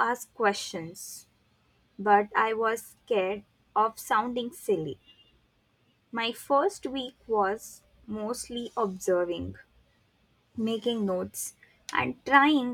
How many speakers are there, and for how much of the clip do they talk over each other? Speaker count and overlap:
1, no overlap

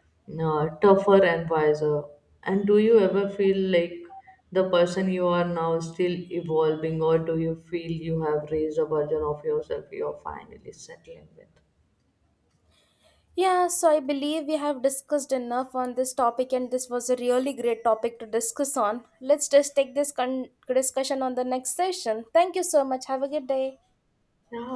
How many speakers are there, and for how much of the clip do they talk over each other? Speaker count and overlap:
2, no overlap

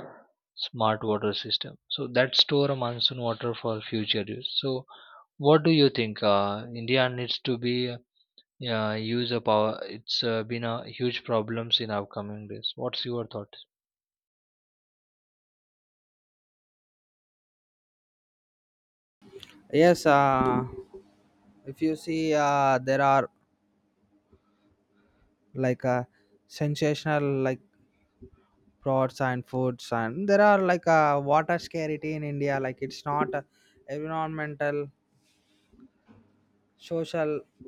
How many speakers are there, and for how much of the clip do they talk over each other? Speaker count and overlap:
2, no overlap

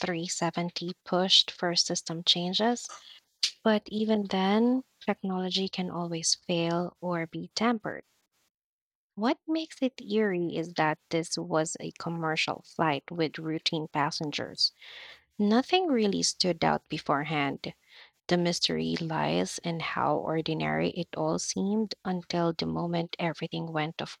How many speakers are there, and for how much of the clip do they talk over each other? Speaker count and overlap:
1, no overlap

